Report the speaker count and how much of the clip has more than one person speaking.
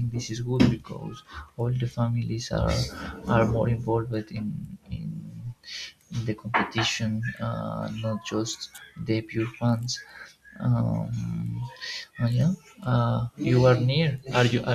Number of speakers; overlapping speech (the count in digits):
1, no overlap